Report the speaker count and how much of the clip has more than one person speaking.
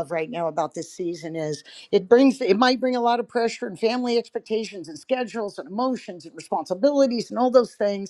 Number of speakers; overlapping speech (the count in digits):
1, no overlap